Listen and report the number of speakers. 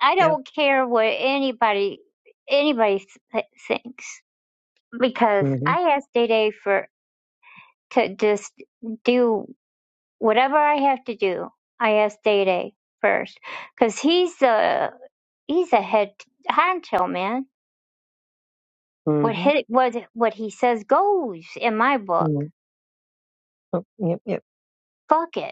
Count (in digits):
2